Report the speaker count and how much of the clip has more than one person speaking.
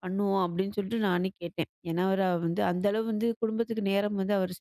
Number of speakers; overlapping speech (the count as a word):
one, no overlap